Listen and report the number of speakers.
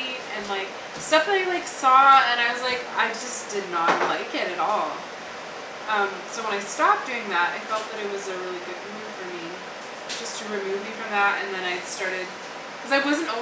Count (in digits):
1